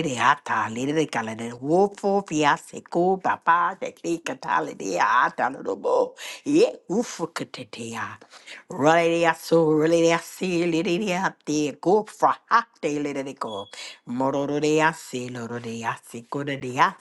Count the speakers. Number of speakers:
one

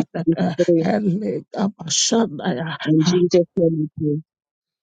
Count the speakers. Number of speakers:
two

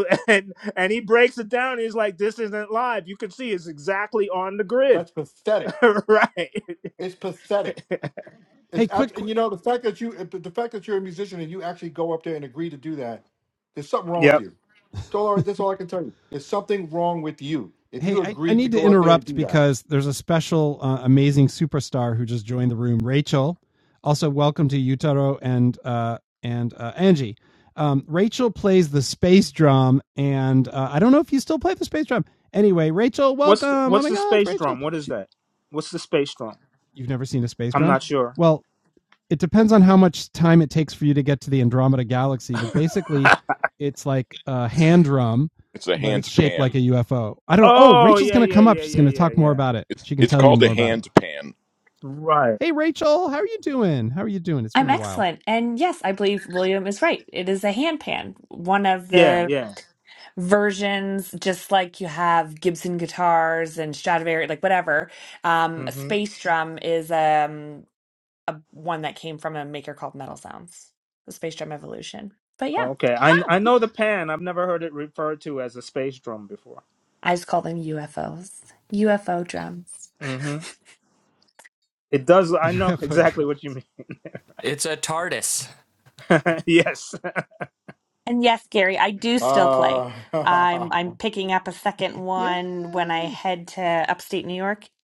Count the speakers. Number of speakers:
six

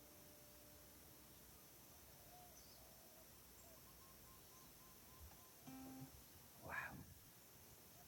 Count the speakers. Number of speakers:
zero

